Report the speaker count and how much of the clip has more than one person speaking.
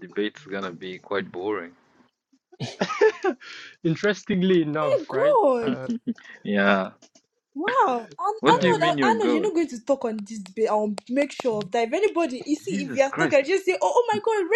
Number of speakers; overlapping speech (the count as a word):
three, about 15%